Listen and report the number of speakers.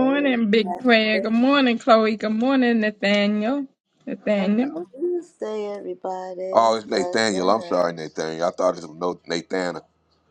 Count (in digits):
3